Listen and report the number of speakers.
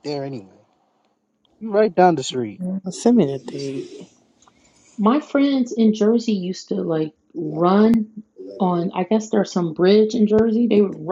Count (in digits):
3